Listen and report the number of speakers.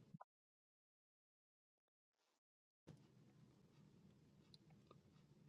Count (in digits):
0